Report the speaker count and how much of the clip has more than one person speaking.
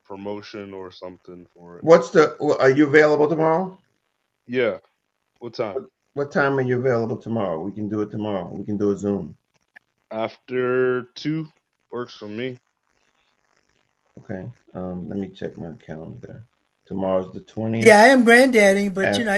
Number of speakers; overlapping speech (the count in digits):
3, about 3%